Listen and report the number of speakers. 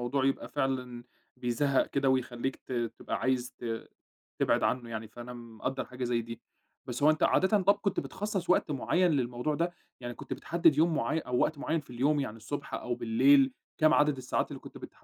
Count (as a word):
one